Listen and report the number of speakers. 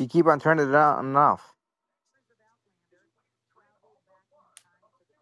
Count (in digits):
1